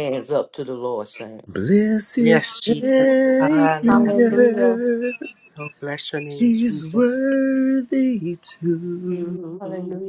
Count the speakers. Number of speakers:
four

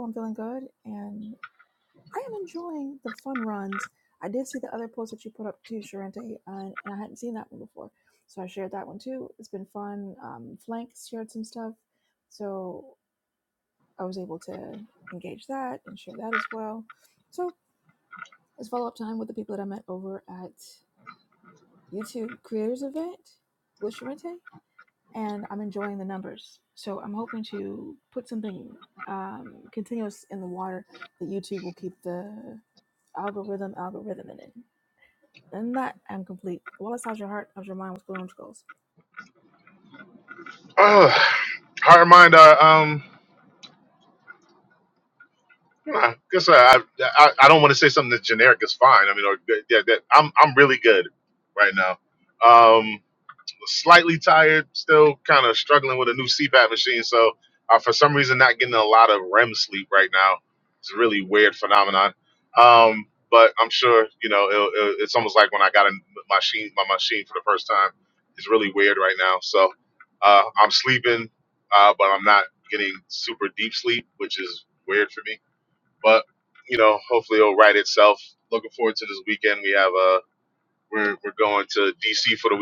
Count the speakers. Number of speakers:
two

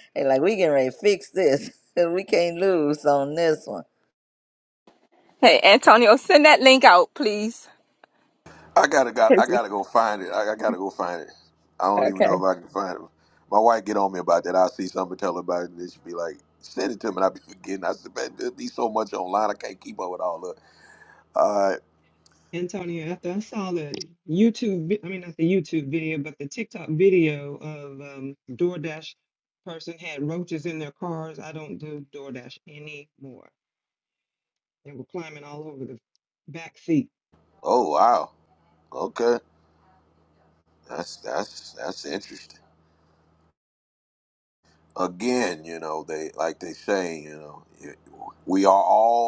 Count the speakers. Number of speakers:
four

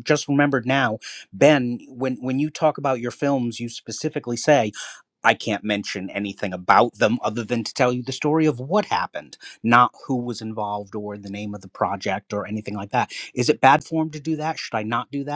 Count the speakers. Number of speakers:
one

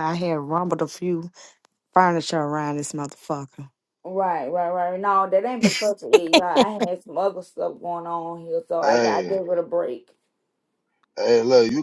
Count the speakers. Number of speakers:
three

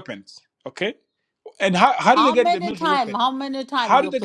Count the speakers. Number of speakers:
two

